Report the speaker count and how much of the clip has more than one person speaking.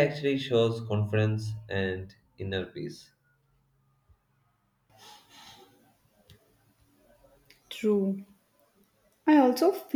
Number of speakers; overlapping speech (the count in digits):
2, no overlap